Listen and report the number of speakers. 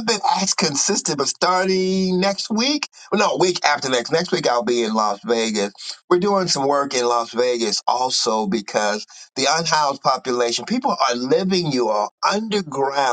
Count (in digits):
1